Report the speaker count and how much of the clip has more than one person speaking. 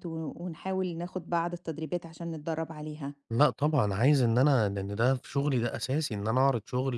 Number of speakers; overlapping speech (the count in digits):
2, no overlap